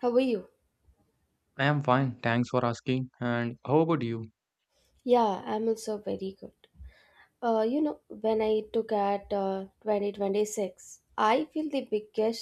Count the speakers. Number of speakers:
two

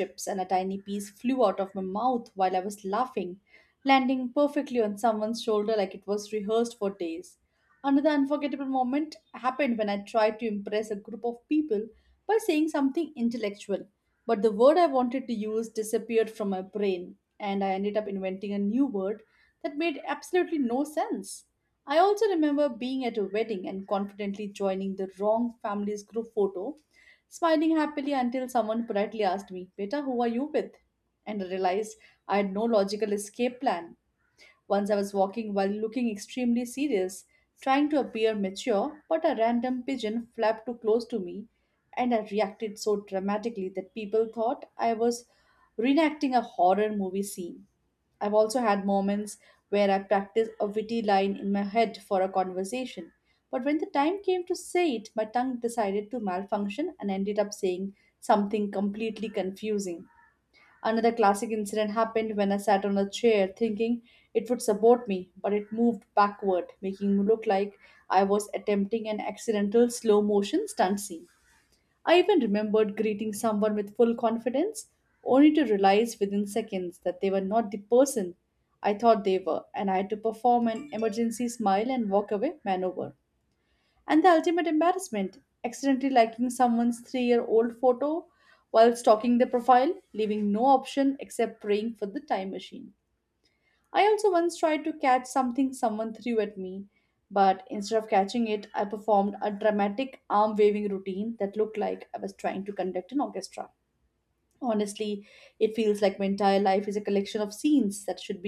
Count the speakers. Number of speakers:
one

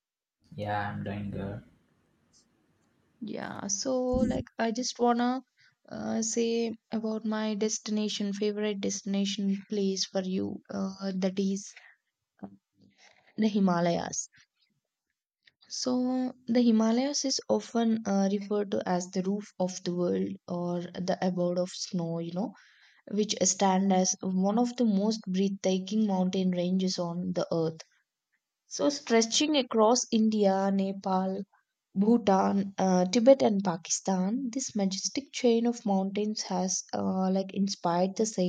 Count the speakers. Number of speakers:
two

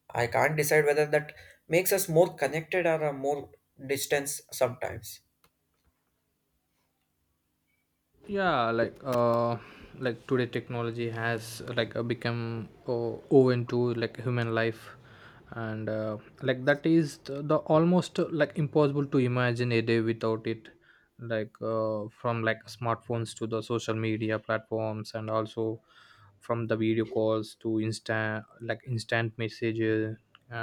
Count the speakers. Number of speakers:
two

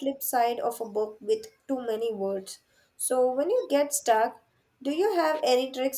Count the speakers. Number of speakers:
one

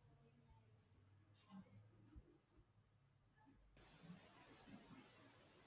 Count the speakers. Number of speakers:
zero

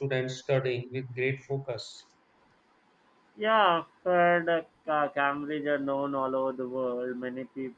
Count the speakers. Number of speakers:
two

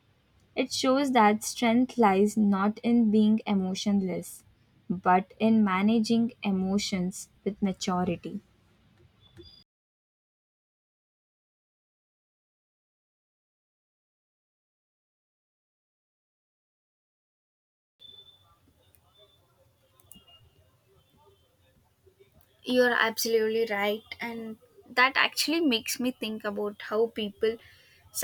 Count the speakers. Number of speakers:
two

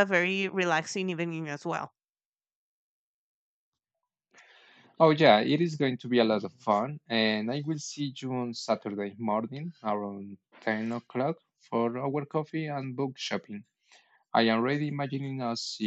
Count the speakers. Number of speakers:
two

